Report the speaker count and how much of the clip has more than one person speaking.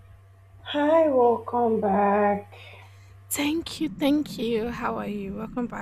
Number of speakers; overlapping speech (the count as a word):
two, no overlap